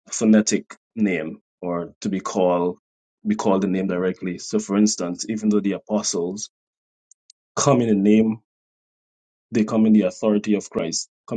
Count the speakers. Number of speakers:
one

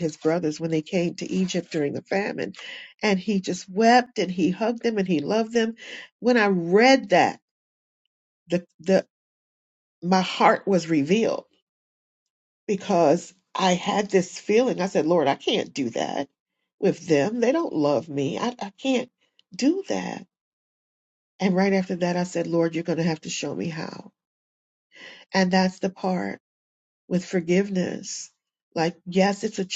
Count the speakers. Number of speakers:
one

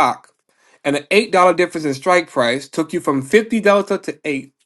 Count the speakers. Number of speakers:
one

